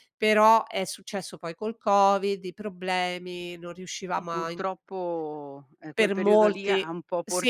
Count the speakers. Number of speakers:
two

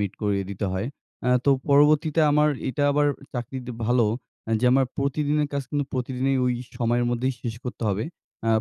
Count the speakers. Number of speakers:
one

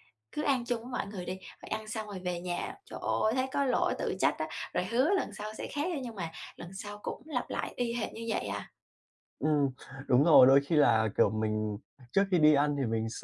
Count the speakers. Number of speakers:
two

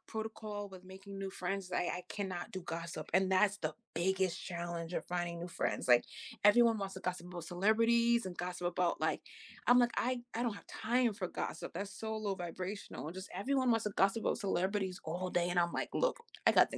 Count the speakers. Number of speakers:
one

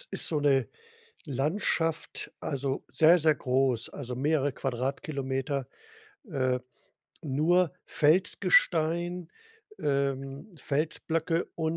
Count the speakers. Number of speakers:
one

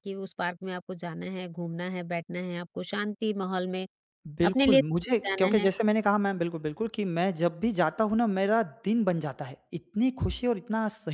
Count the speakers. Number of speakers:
two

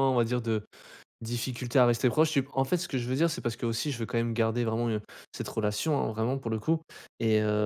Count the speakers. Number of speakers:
one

